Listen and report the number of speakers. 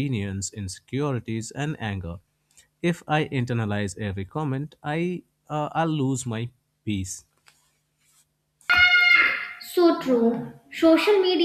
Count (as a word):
two